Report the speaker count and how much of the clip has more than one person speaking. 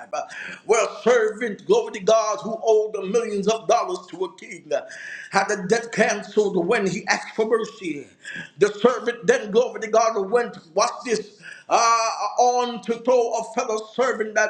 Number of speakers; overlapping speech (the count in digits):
1, no overlap